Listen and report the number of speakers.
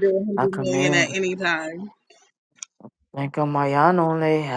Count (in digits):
2